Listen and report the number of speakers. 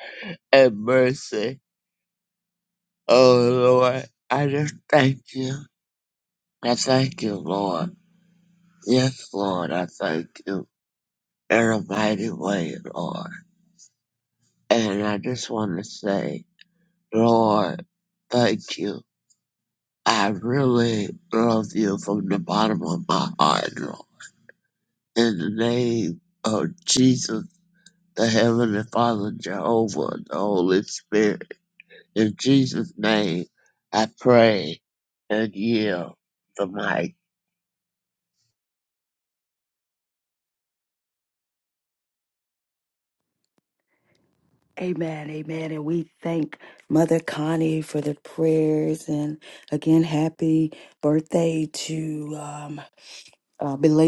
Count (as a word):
two